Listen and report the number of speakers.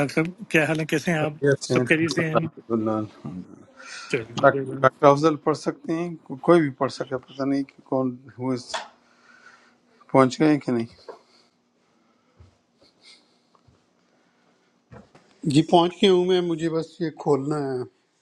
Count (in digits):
3